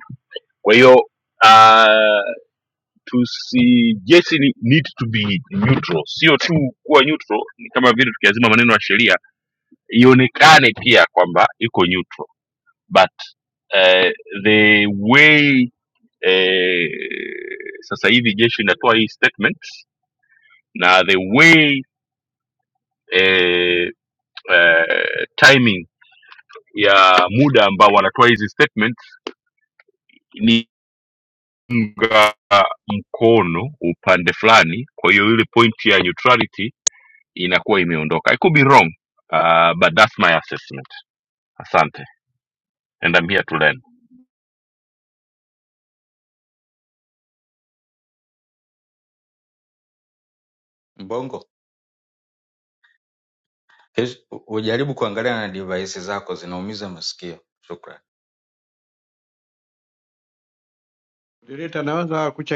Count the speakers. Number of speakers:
3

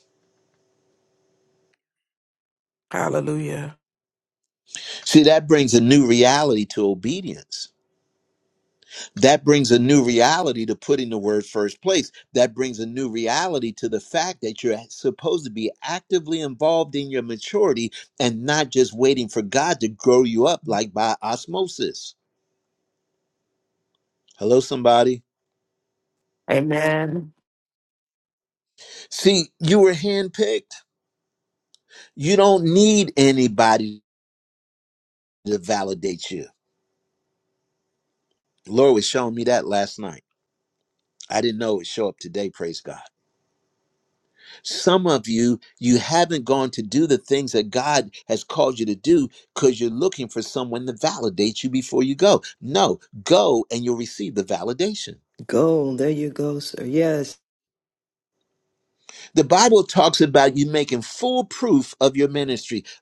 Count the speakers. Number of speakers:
3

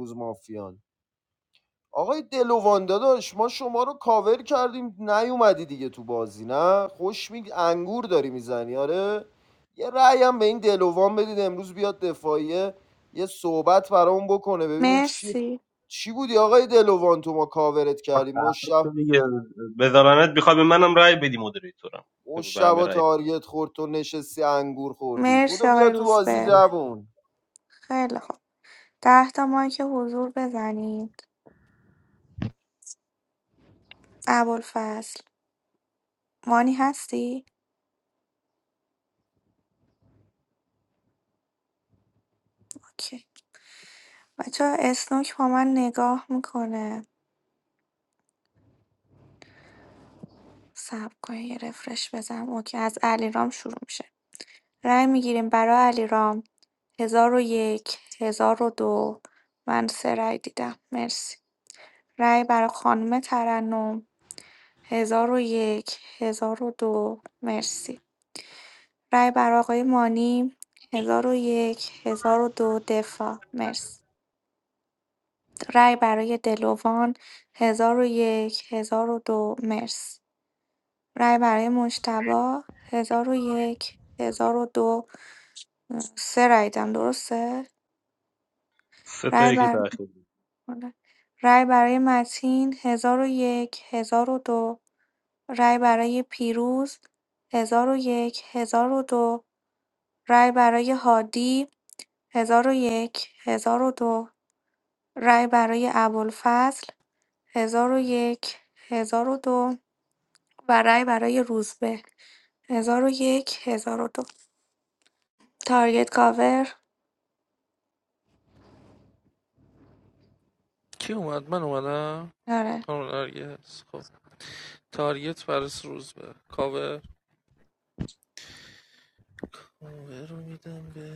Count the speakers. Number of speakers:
4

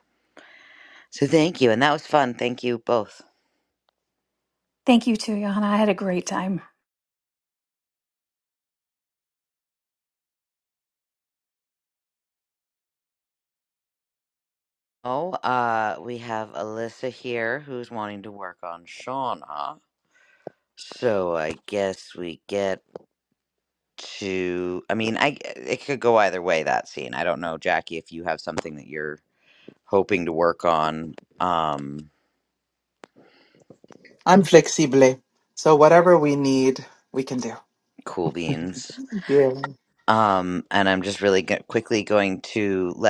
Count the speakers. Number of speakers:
3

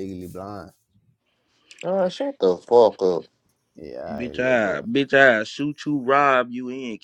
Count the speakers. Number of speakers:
3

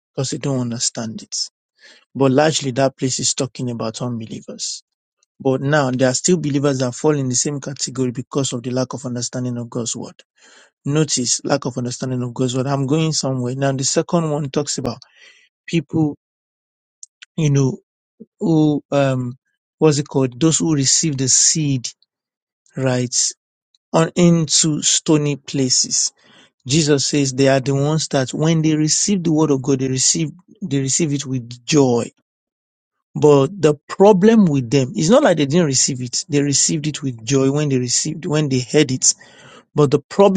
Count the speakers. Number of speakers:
1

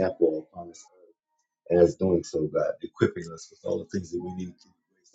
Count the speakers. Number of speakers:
1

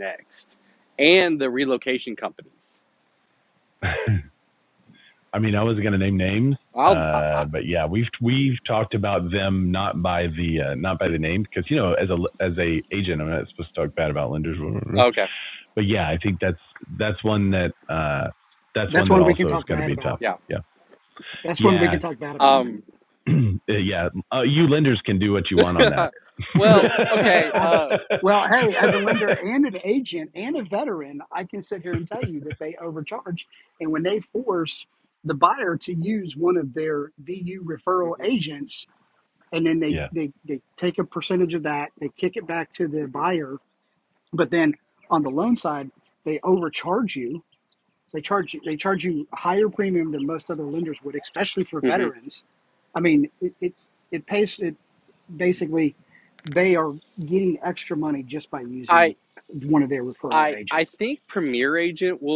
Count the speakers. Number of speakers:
3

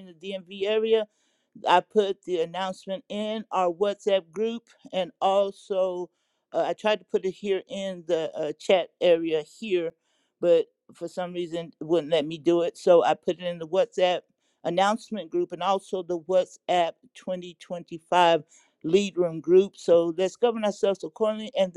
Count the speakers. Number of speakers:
1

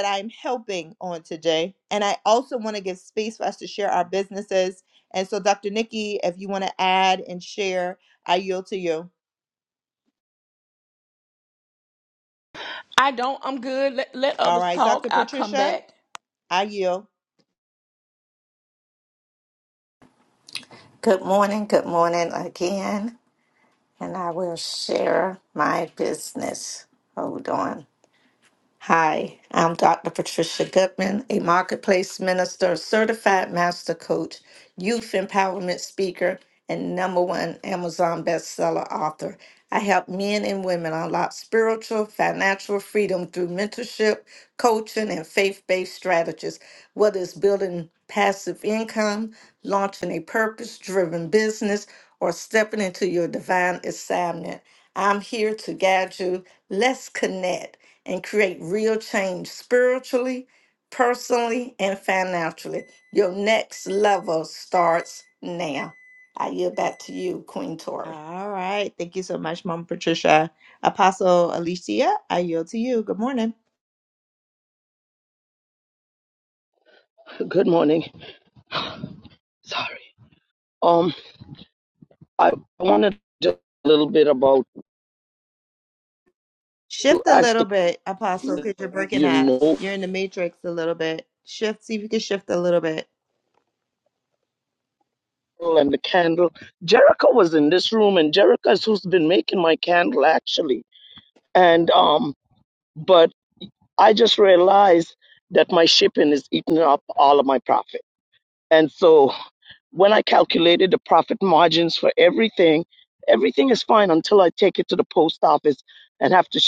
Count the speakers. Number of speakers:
4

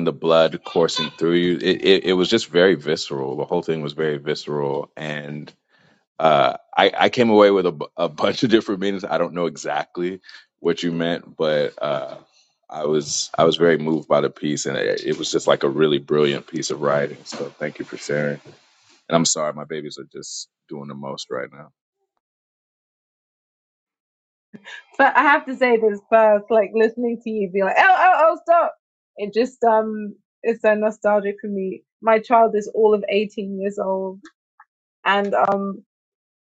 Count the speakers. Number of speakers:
2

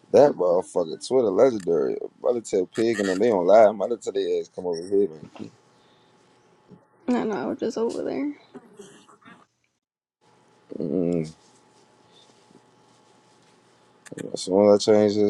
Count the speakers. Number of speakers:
2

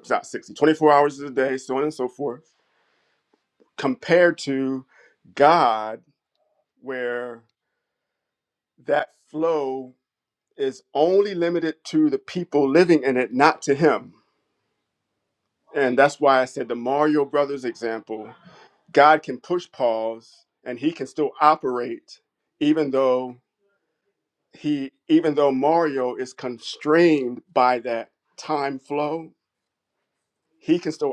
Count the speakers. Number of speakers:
1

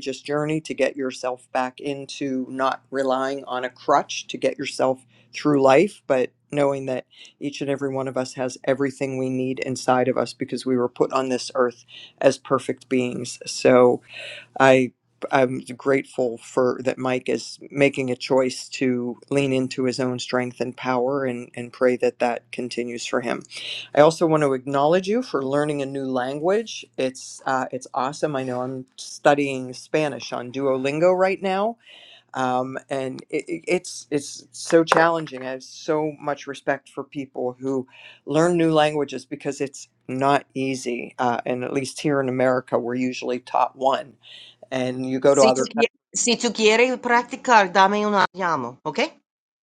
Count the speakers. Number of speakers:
2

